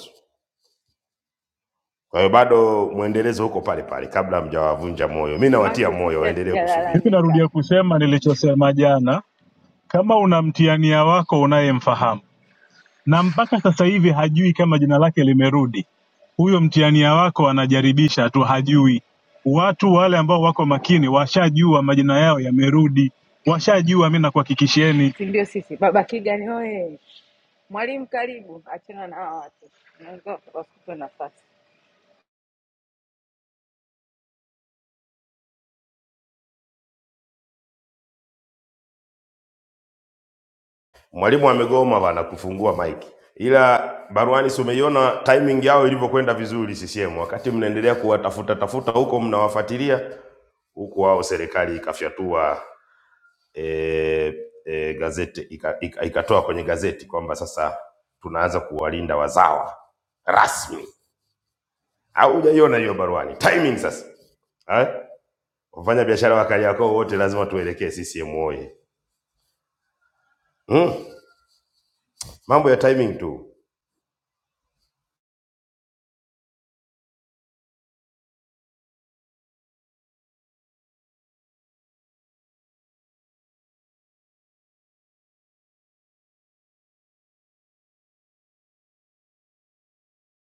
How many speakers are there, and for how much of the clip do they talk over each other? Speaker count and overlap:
3, about 2%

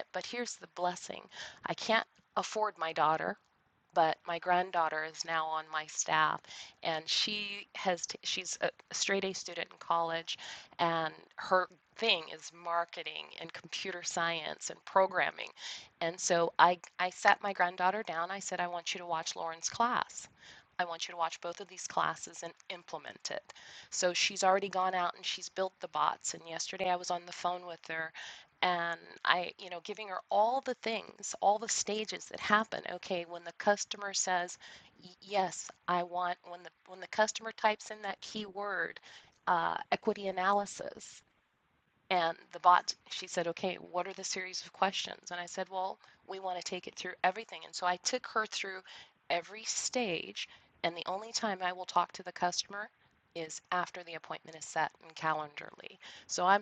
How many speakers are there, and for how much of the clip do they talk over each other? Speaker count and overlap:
1, no overlap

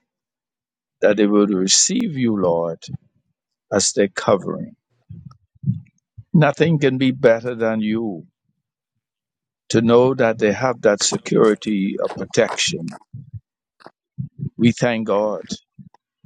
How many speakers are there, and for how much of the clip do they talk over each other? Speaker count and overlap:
1, no overlap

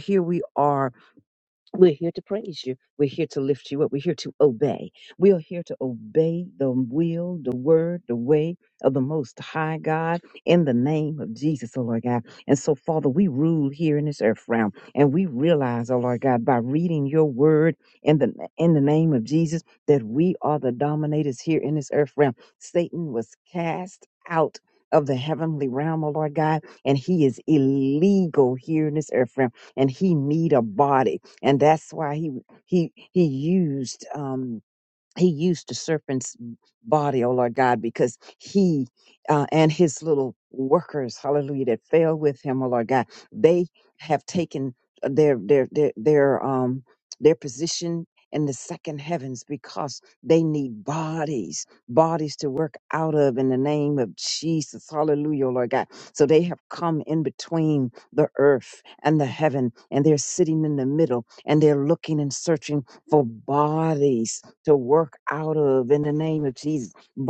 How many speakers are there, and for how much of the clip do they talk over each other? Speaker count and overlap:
1, no overlap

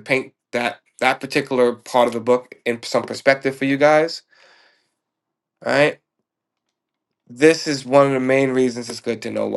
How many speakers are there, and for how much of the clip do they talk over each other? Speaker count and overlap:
1, no overlap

